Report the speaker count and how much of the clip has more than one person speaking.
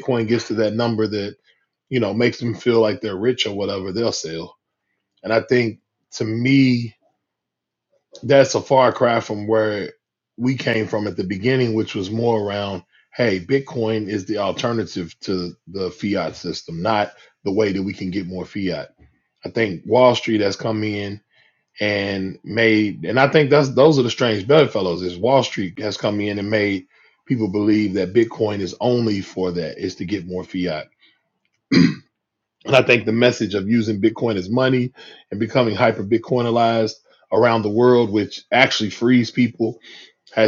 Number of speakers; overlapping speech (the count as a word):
one, no overlap